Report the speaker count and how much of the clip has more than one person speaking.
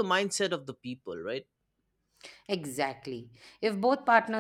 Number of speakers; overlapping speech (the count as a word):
two, no overlap